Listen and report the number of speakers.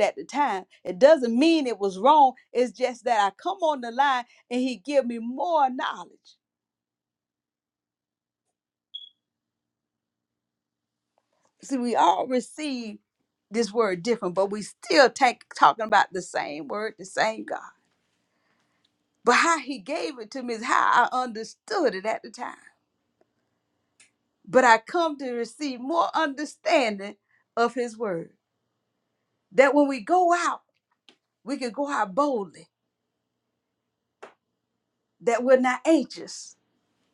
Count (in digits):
1